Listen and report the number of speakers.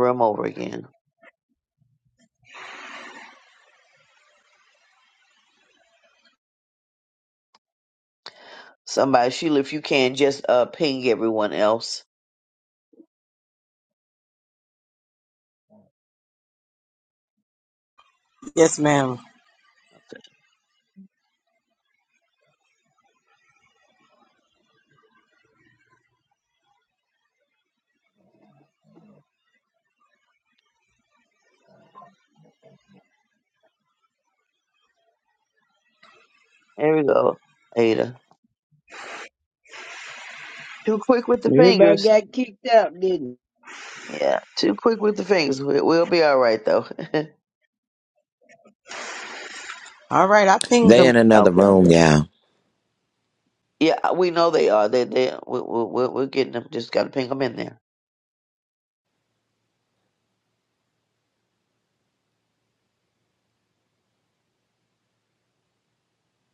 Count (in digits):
4